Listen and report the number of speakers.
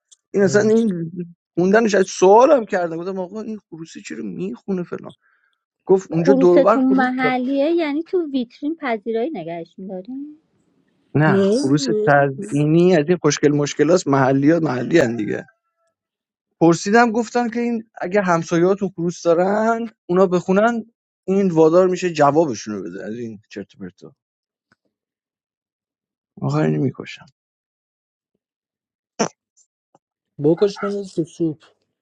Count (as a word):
three